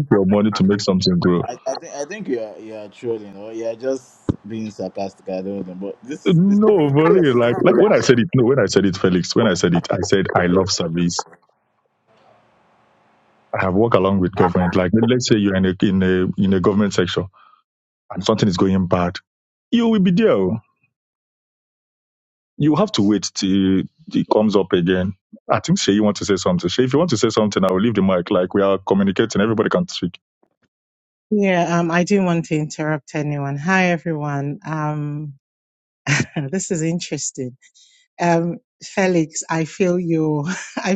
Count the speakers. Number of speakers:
3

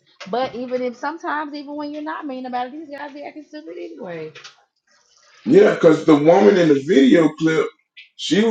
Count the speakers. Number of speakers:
2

